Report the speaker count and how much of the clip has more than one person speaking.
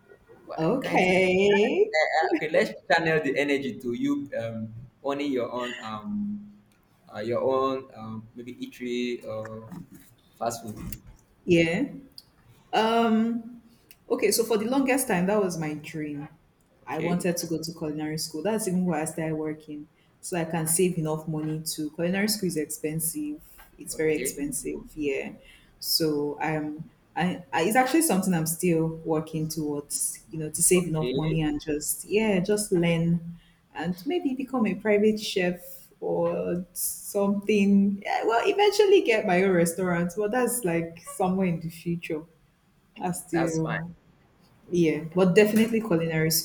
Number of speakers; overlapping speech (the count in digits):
2, about 6%